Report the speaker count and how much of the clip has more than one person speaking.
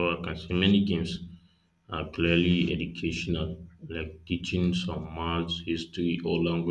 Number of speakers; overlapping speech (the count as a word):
one, no overlap